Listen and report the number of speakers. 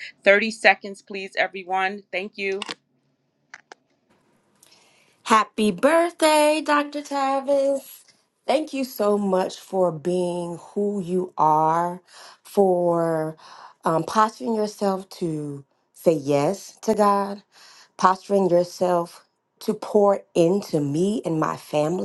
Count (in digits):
2